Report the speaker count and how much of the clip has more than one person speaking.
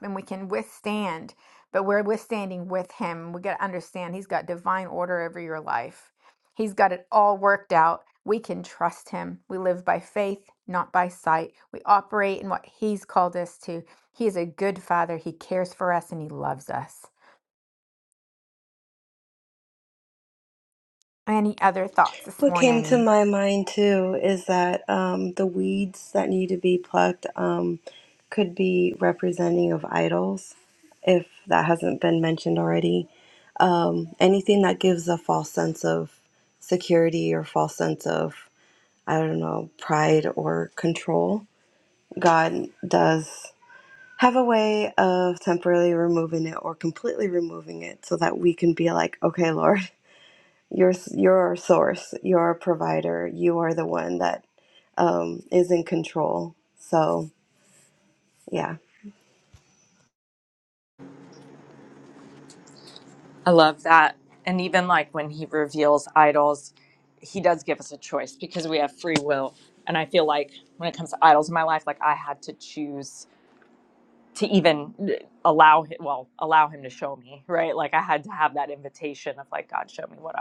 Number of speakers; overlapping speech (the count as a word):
three, about 1%